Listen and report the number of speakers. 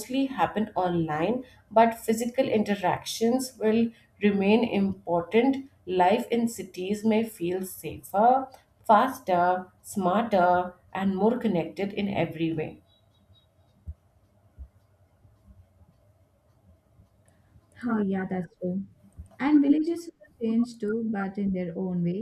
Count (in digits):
2